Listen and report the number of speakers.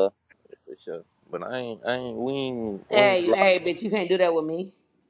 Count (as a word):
two